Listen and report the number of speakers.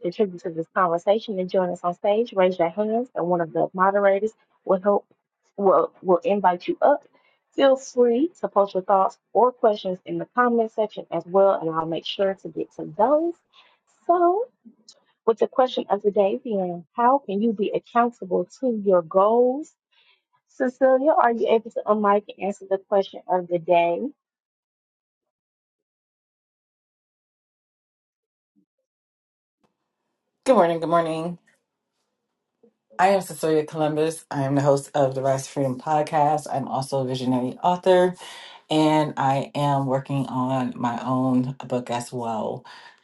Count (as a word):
two